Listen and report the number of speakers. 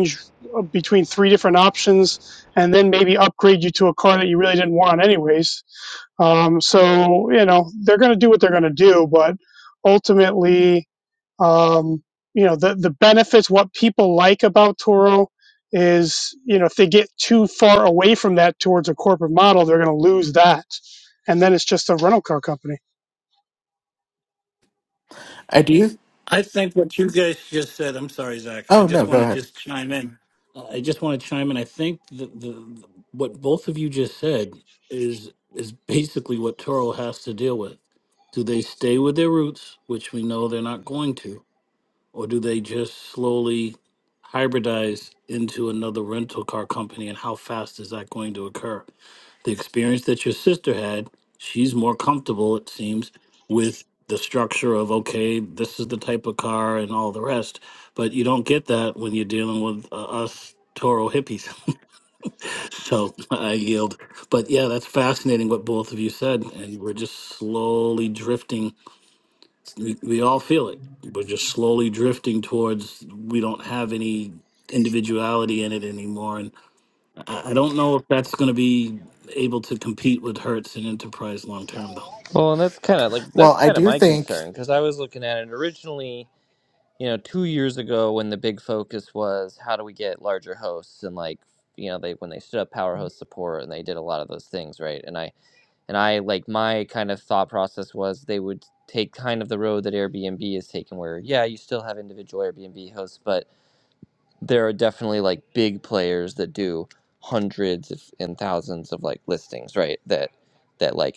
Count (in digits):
4